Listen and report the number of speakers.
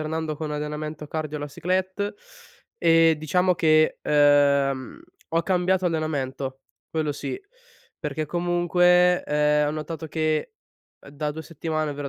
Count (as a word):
one